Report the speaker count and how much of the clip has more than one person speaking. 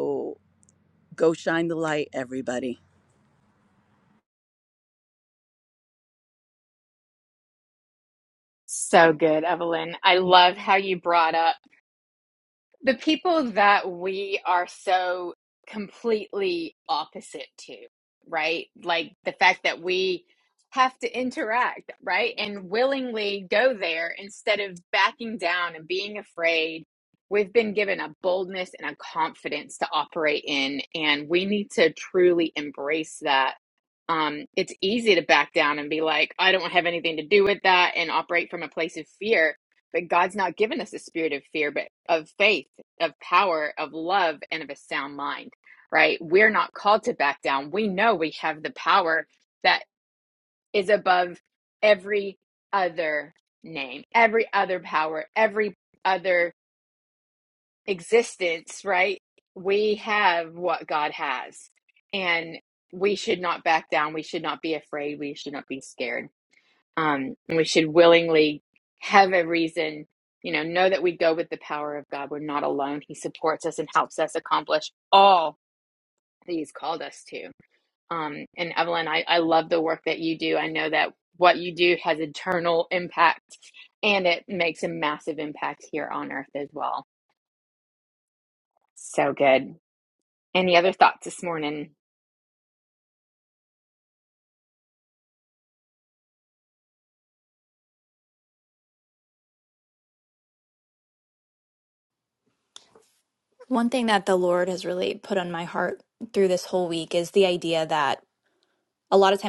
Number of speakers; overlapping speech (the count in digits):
3, no overlap